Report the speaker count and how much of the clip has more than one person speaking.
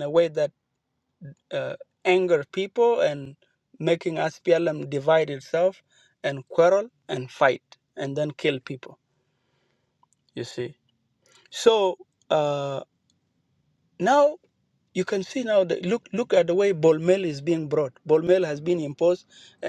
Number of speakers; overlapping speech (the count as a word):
one, no overlap